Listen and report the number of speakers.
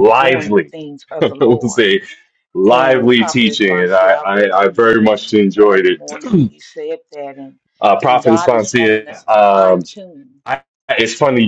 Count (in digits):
2